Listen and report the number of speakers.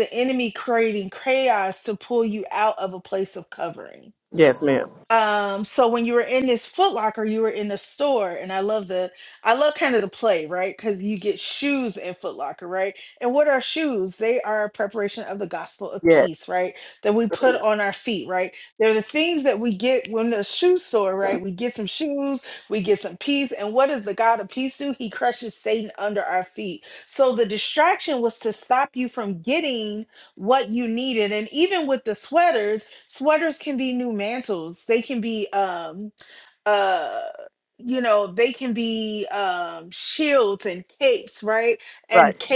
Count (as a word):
two